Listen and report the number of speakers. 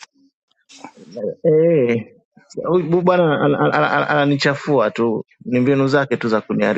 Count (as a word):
one